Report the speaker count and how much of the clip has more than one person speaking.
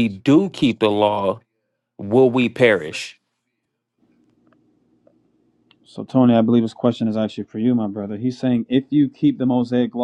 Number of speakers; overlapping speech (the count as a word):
two, no overlap